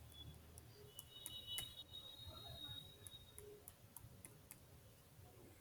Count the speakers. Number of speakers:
0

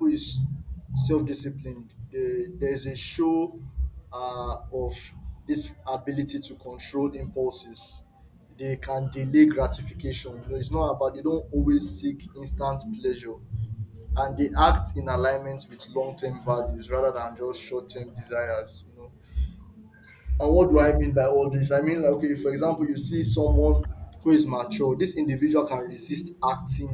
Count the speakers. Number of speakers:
1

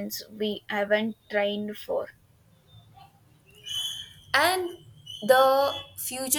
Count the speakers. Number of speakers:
2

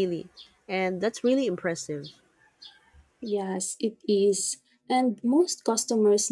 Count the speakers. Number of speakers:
2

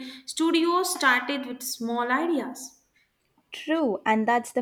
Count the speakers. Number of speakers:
2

